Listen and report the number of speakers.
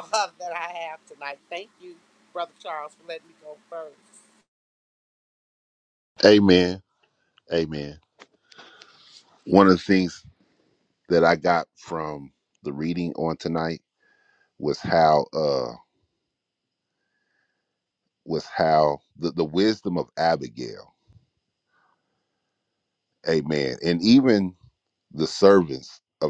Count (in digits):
2